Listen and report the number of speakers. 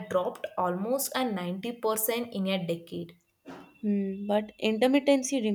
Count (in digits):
2